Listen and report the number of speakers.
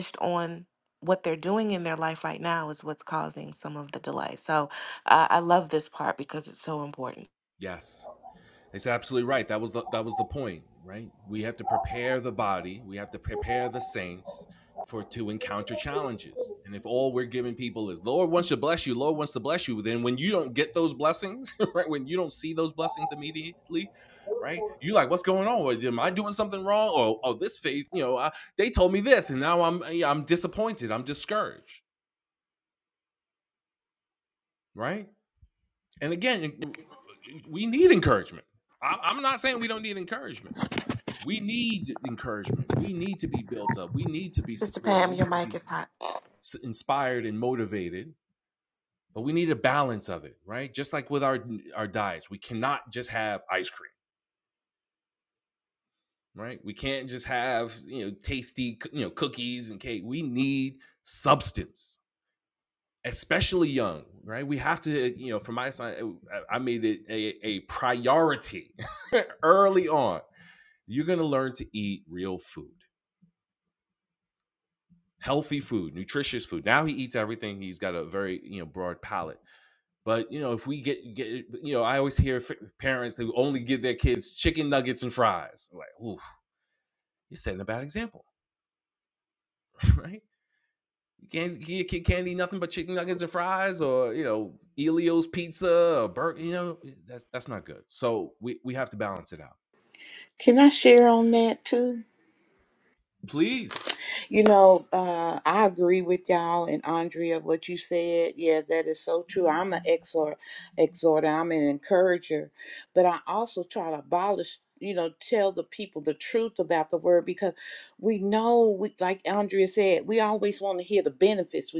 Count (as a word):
three